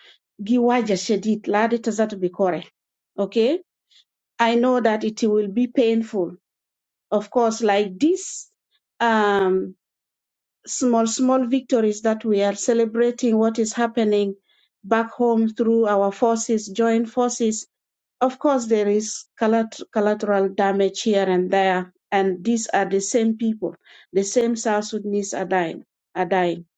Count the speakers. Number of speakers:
one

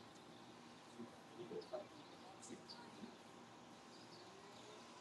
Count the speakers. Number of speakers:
zero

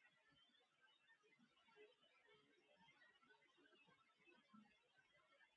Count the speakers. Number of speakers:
zero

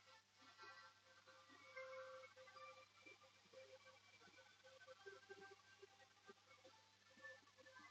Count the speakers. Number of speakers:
zero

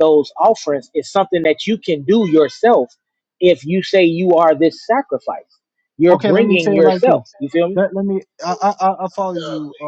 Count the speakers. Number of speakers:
two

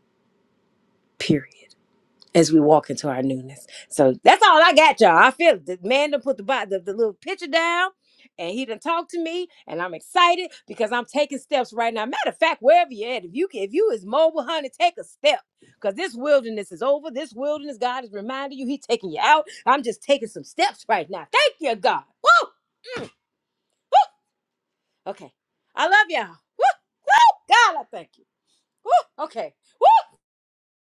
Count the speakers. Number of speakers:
one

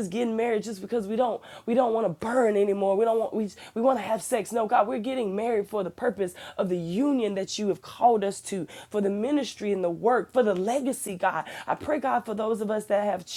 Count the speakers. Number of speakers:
one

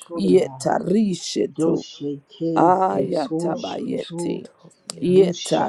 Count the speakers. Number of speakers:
three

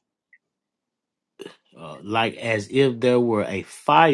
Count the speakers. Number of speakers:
one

